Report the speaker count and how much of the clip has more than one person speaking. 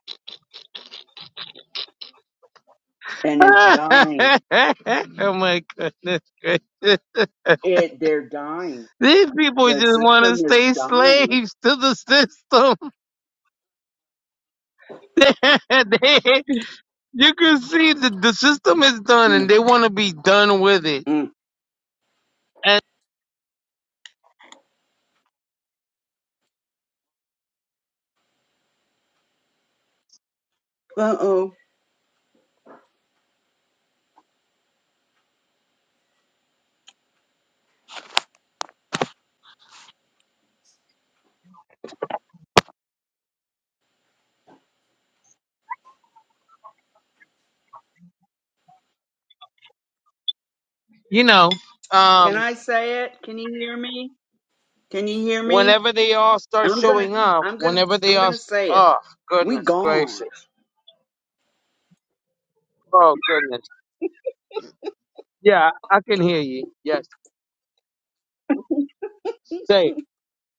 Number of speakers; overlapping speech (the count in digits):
2, about 7%